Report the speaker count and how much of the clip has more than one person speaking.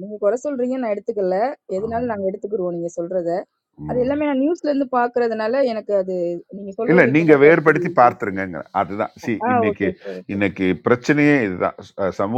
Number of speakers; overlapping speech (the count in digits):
2, about 19%